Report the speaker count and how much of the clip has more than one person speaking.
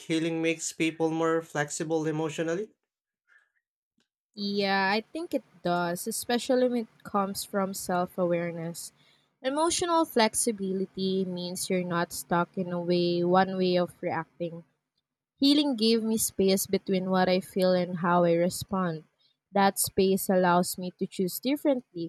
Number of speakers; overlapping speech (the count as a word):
two, no overlap